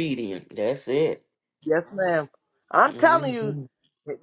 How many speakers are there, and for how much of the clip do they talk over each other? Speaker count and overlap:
2, about 14%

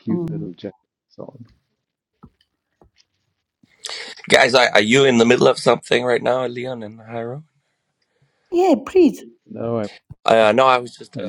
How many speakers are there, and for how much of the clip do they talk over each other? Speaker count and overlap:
3, about 4%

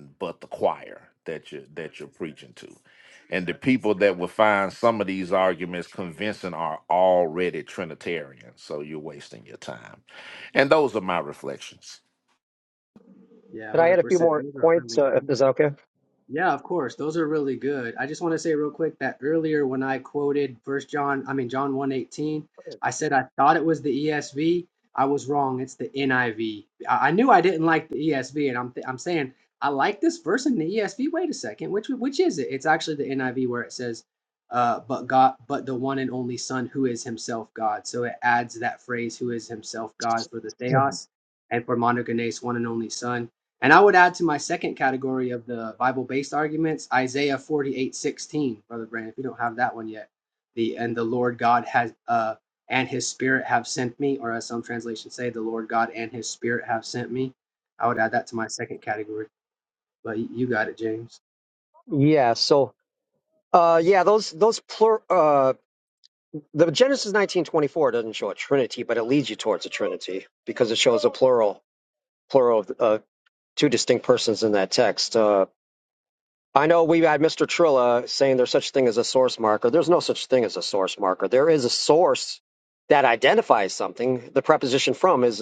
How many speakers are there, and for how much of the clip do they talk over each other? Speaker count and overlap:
3, about 2%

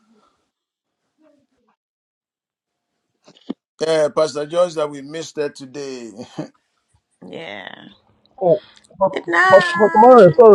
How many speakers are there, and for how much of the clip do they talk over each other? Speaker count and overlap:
3, about 8%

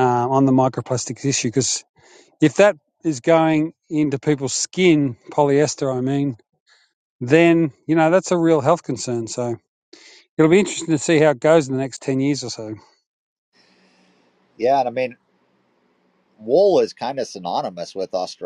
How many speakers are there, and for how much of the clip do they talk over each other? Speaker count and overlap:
2, no overlap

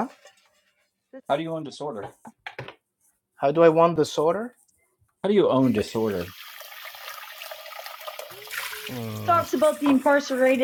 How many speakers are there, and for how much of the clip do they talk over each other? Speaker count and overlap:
3, about 2%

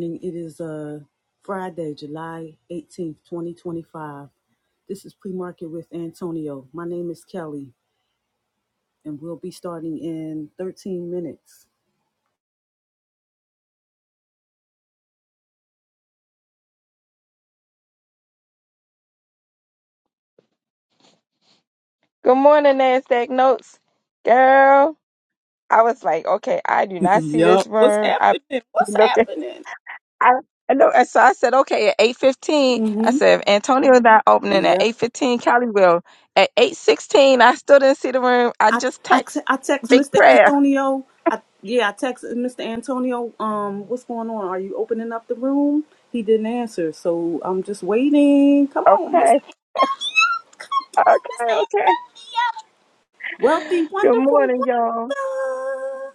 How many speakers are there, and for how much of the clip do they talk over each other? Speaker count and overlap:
2, about 10%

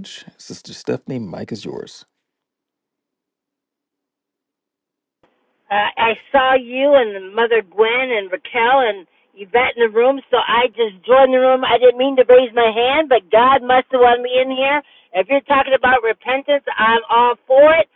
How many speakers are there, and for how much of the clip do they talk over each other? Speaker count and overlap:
2, no overlap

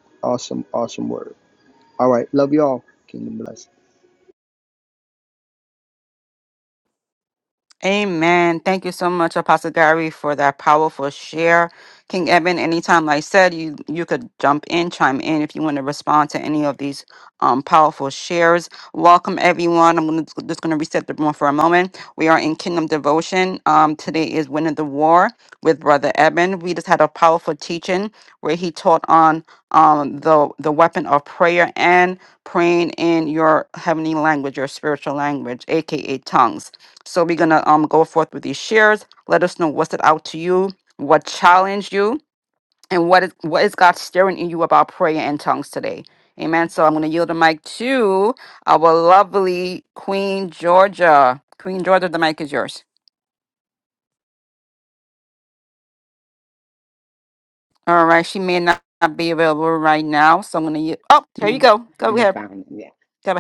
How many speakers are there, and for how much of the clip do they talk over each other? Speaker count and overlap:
3, about 1%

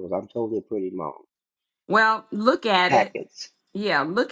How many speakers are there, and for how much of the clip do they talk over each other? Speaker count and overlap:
2, about 5%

